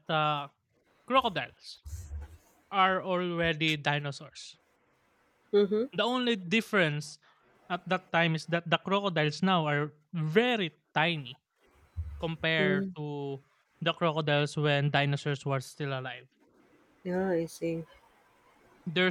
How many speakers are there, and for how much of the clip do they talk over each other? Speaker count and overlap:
2, about 2%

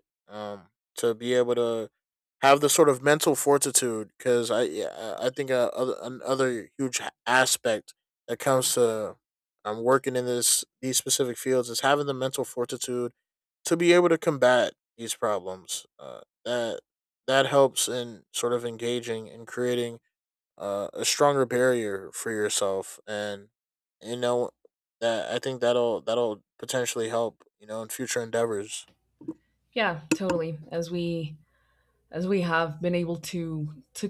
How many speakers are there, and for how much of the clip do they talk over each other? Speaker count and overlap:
2, no overlap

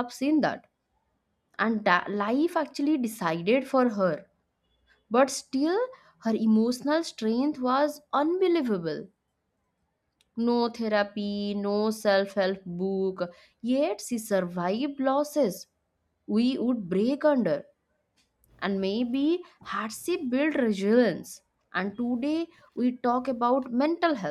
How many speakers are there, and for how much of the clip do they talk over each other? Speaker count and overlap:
1, no overlap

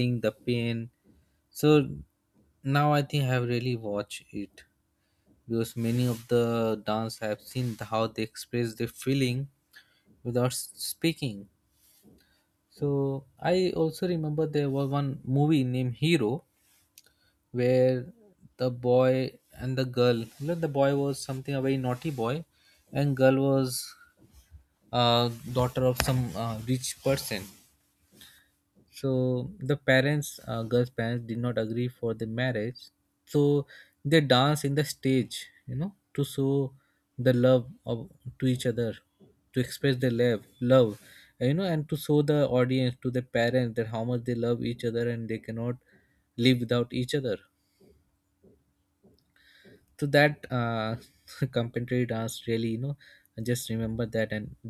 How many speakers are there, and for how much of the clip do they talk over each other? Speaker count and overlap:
1, no overlap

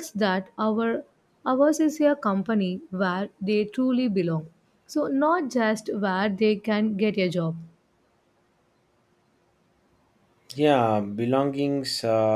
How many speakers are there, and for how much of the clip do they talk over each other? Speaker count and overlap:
2, no overlap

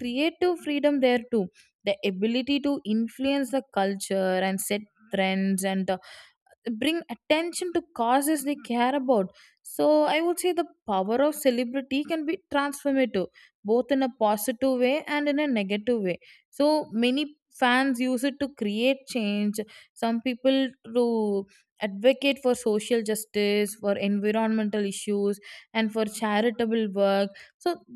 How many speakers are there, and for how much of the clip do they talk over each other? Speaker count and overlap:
1, no overlap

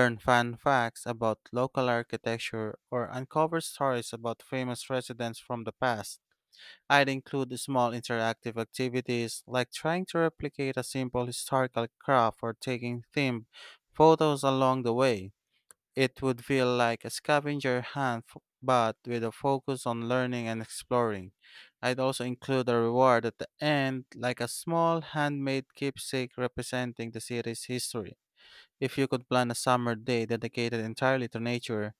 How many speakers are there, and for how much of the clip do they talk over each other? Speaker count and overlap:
1, no overlap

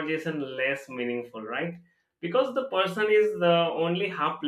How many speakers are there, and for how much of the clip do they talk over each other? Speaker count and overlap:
1, no overlap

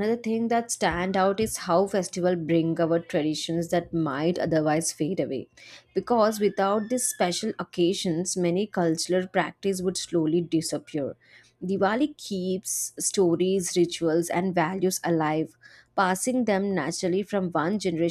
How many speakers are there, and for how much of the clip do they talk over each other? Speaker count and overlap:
1, no overlap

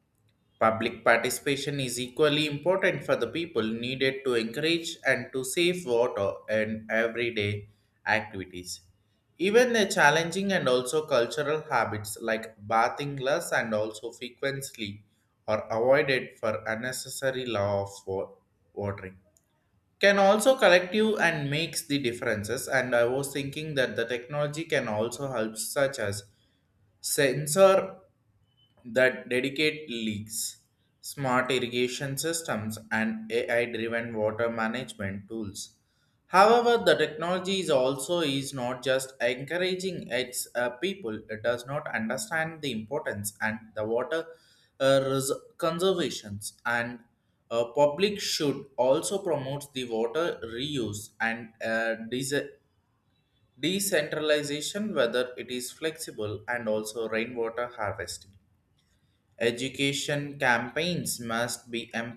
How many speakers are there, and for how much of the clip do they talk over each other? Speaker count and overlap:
1, no overlap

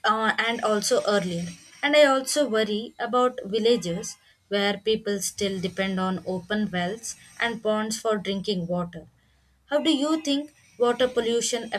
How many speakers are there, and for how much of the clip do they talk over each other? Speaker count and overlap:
1, no overlap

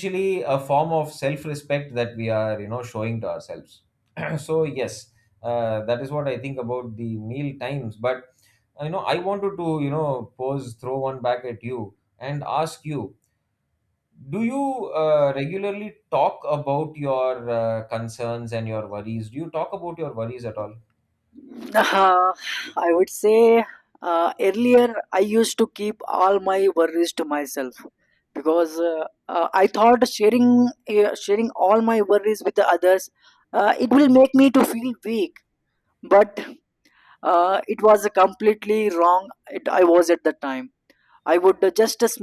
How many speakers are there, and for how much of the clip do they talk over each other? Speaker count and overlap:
2, no overlap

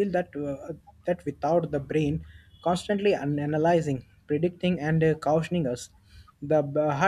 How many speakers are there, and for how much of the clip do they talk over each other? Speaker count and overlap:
1, no overlap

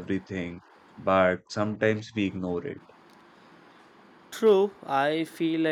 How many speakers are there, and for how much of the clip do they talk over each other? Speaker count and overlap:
2, no overlap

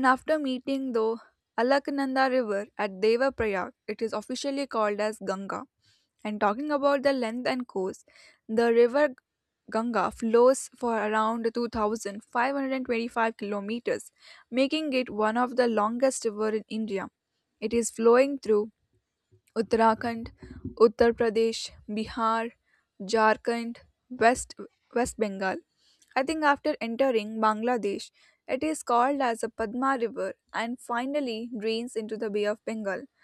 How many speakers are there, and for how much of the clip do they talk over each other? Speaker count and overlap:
1, no overlap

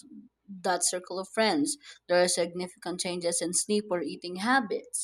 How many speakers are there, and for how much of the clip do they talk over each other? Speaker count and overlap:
1, no overlap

